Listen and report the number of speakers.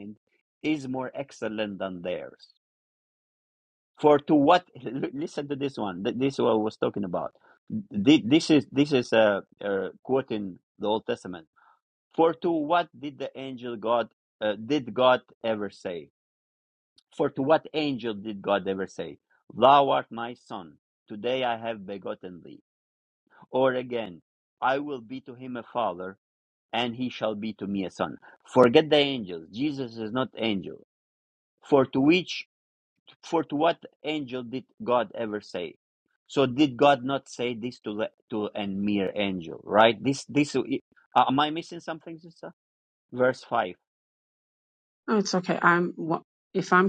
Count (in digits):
2